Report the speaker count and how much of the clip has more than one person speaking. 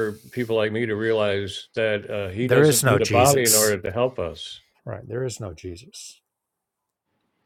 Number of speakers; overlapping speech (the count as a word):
two, about 18%